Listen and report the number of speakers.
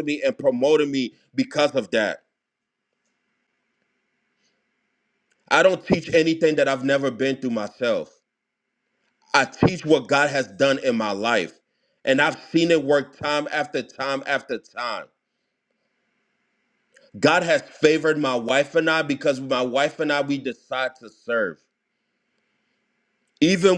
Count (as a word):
one